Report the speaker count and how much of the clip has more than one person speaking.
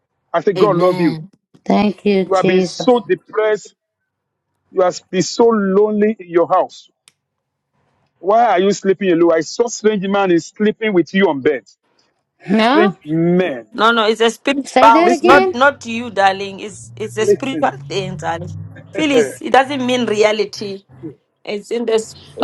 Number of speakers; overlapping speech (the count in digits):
3, about 13%